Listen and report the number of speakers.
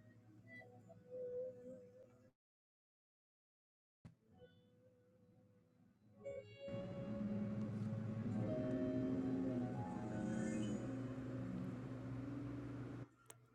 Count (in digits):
0